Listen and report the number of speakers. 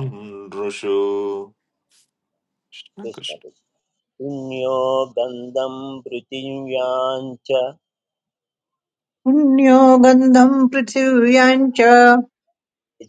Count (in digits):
3